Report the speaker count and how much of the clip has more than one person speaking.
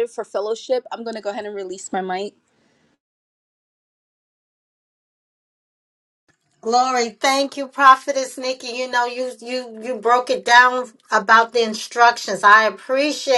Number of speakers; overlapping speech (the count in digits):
2, no overlap